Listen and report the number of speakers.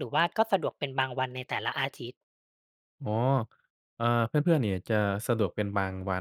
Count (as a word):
two